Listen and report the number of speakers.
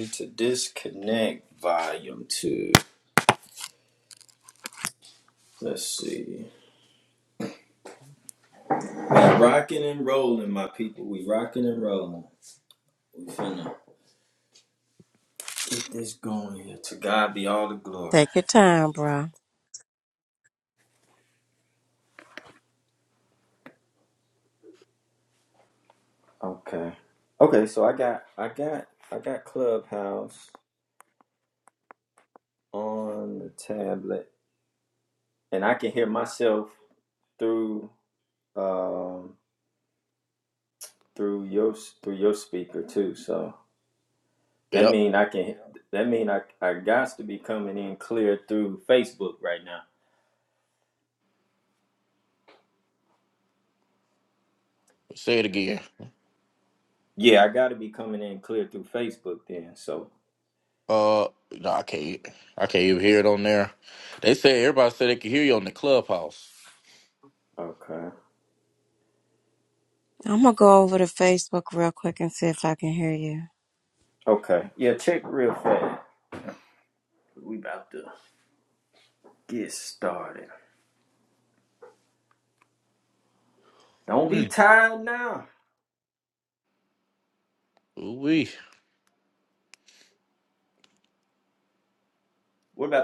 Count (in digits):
3